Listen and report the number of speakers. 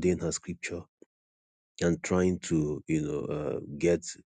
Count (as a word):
one